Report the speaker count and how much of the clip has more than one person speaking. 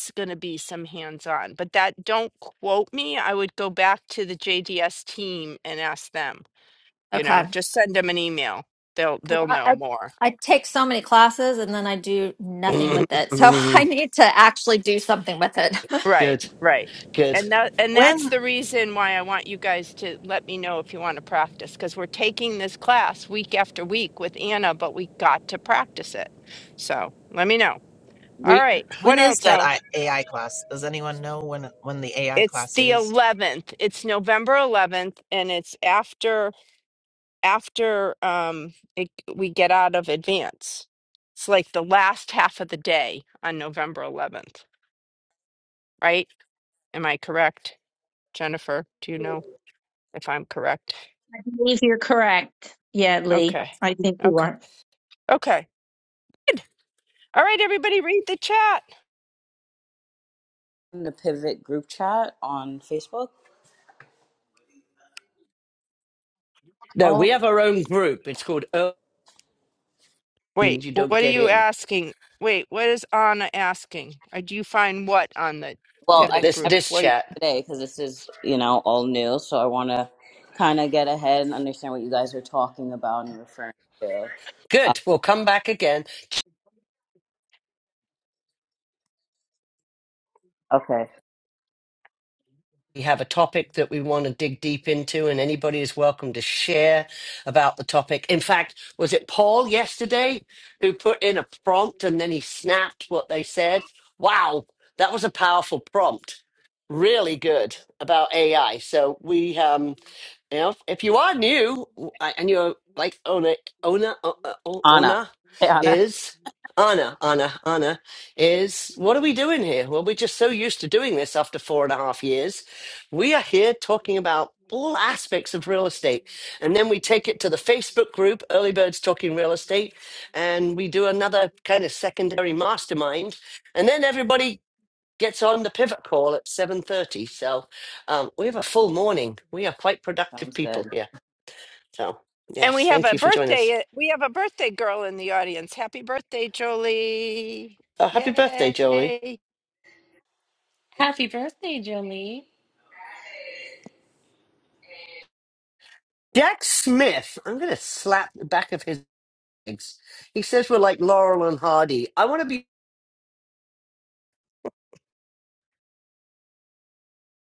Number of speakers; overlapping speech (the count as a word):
seven, about 6%